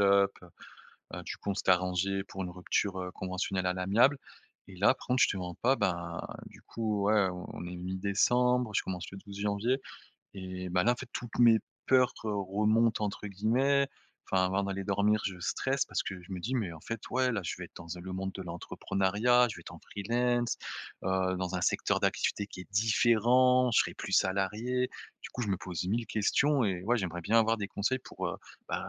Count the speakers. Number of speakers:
1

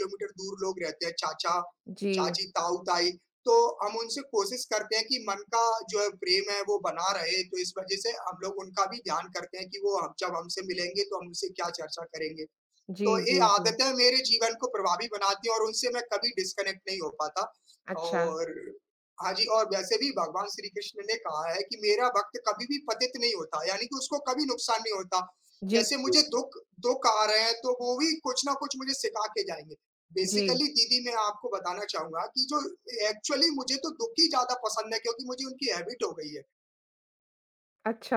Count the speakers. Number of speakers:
2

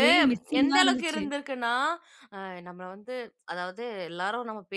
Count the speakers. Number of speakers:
2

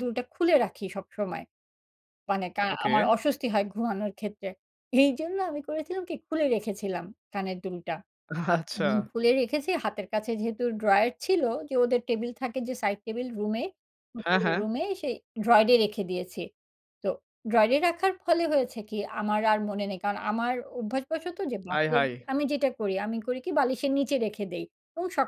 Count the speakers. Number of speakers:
2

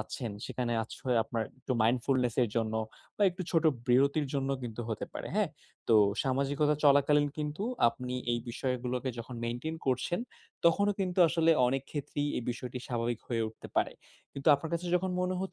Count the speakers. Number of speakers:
1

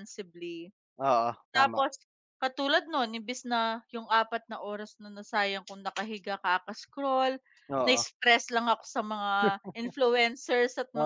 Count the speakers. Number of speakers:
2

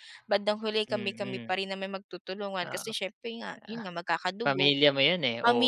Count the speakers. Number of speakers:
2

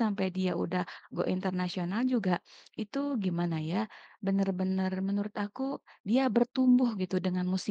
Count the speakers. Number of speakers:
1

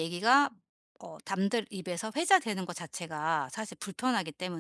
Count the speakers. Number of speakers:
1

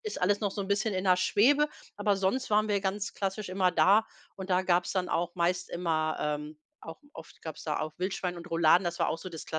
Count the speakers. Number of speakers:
1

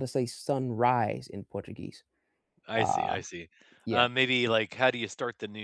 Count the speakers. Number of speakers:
2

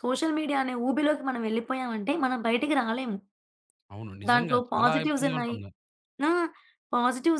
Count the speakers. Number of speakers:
2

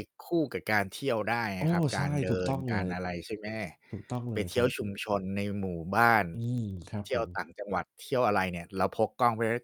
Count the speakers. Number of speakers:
2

